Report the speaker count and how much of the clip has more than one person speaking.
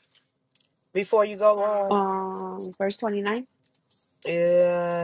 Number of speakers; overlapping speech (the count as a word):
two, about 2%